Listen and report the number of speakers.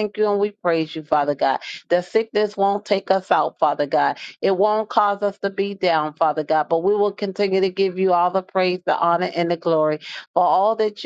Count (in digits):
1